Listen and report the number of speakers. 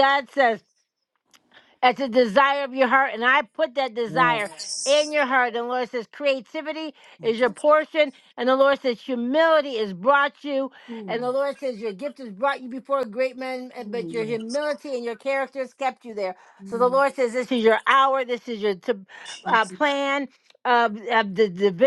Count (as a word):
two